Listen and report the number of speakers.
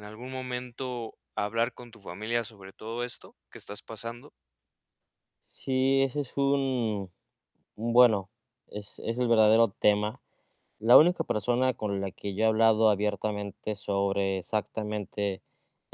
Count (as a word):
two